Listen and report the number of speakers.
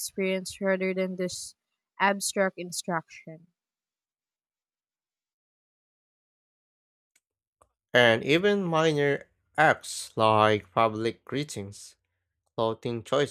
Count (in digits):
2